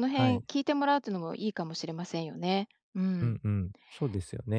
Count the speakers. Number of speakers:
2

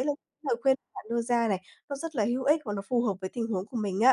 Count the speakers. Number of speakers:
1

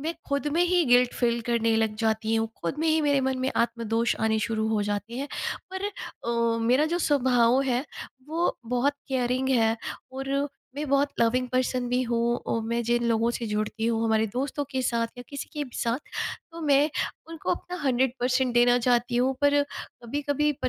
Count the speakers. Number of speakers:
1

